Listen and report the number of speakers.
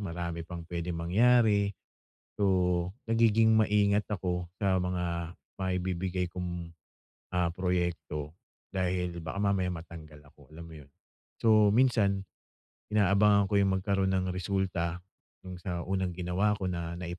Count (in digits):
1